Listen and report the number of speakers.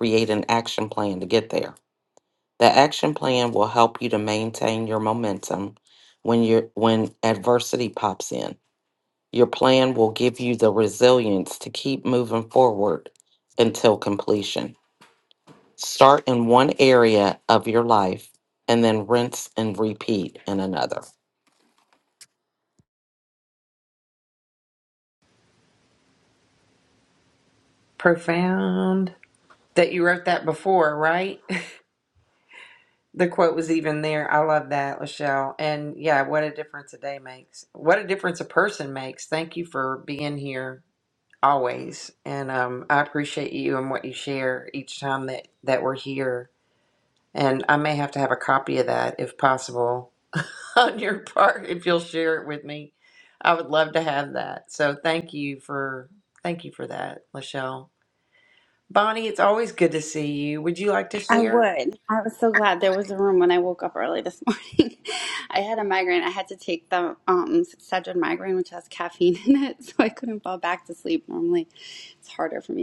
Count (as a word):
three